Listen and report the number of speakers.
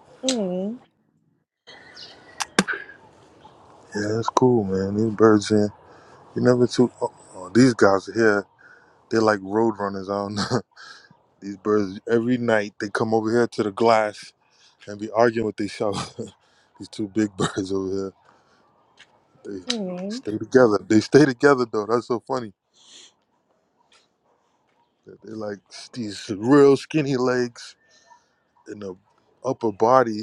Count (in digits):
2